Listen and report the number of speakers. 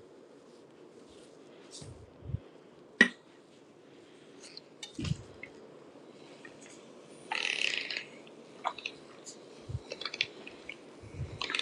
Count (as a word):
zero